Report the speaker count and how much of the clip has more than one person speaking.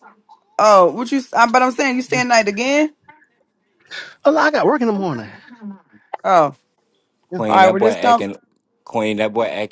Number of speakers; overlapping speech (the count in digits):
3, about 8%